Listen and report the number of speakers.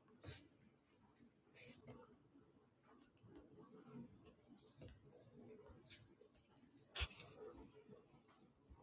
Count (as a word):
zero